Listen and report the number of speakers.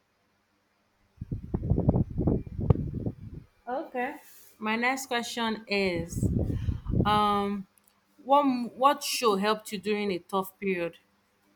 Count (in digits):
1